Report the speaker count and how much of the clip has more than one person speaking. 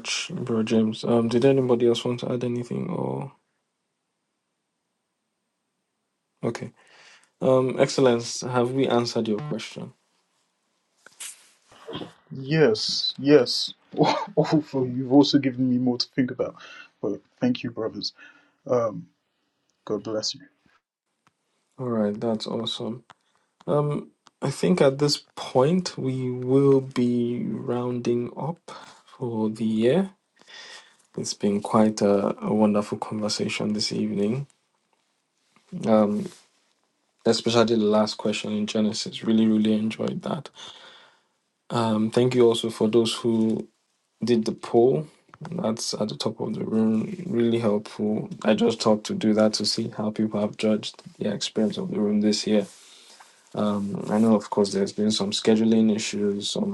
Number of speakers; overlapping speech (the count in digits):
2, no overlap